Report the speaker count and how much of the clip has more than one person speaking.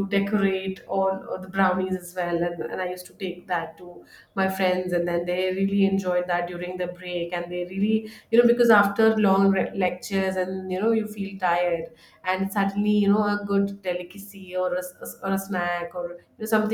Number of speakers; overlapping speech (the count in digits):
1, no overlap